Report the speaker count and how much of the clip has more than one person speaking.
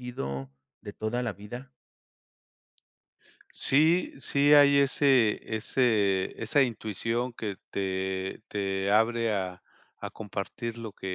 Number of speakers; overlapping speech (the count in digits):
2, no overlap